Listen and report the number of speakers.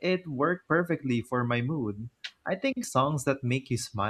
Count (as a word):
one